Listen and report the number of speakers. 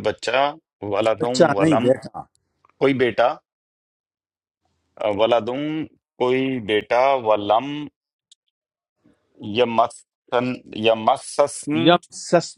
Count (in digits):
2